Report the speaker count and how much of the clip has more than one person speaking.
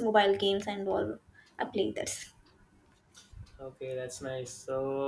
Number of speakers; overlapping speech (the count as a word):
two, no overlap